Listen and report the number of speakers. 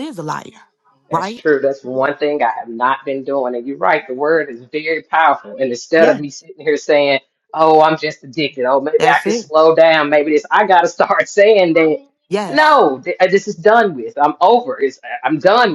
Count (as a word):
two